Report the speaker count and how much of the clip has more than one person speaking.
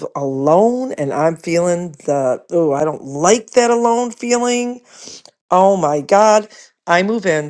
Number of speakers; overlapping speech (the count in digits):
1, no overlap